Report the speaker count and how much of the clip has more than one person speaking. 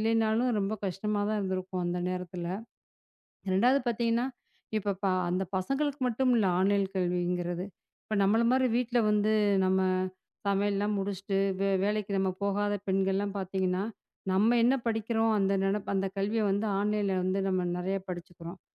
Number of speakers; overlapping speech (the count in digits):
1, no overlap